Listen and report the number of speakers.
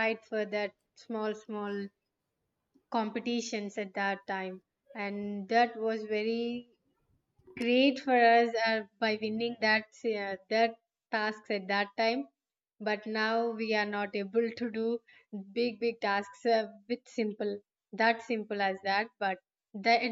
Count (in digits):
1